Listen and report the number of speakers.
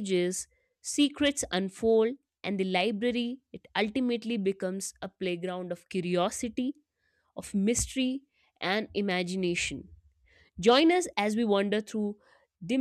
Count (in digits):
1